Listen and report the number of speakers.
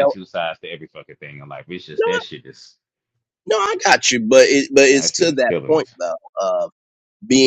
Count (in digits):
2